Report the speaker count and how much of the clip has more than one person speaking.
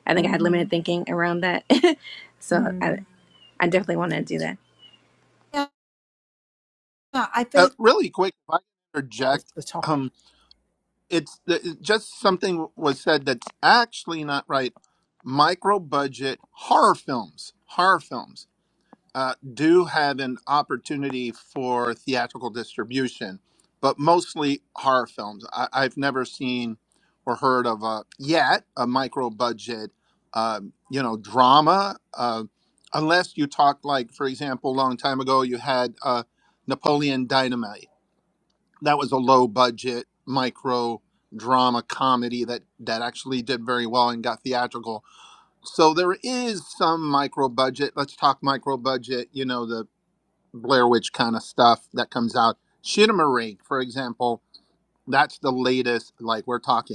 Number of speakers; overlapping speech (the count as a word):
three, about 3%